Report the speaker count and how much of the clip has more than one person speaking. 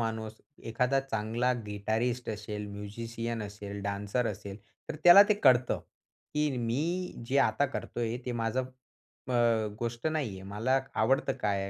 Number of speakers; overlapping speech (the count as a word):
one, no overlap